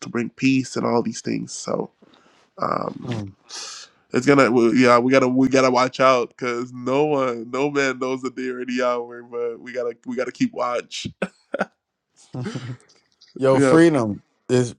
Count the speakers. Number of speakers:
two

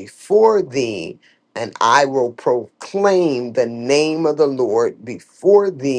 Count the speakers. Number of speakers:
one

